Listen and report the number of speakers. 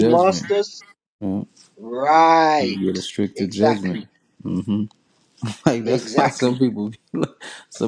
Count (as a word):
two